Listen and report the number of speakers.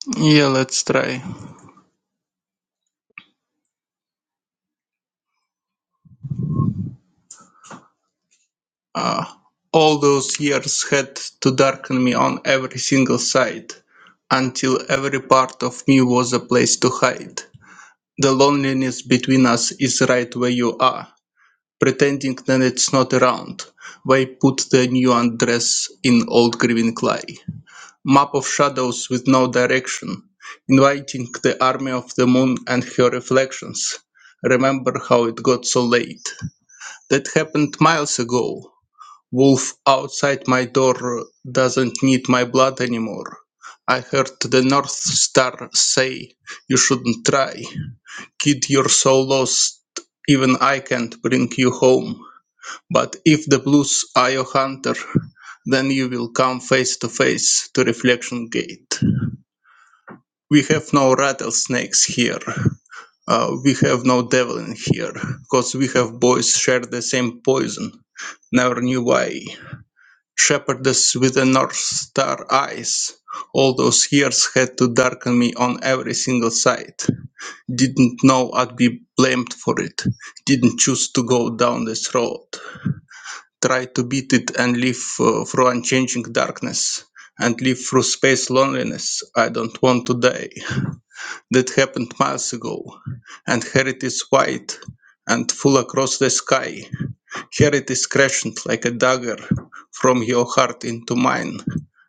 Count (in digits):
1